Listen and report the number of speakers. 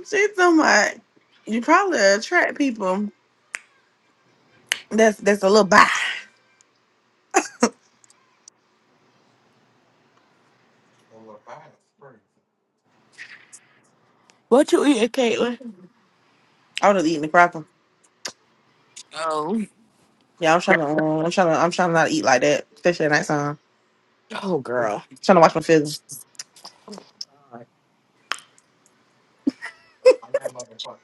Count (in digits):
3